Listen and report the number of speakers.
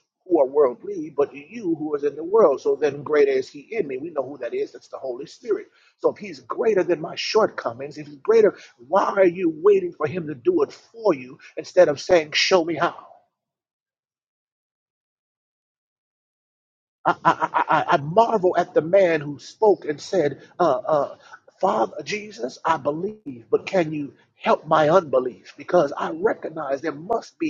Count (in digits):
1